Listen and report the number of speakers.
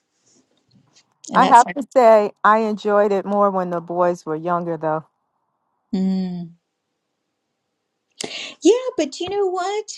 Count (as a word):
two